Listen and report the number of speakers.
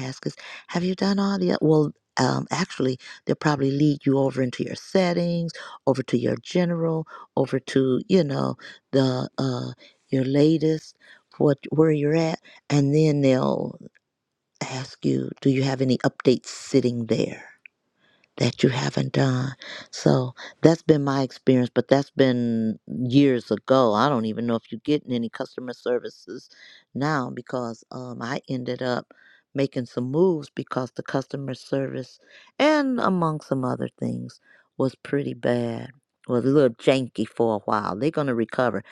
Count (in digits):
1